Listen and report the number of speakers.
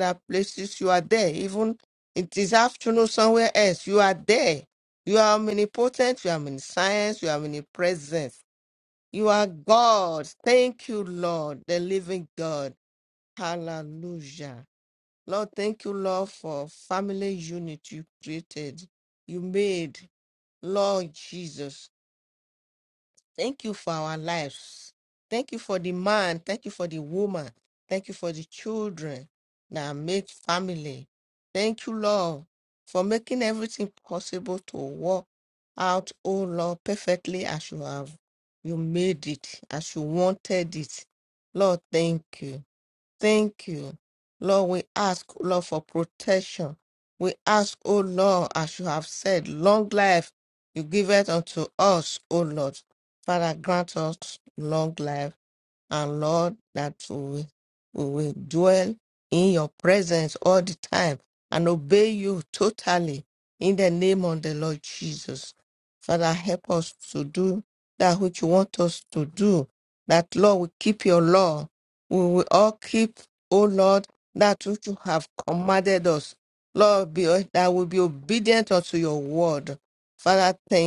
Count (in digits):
1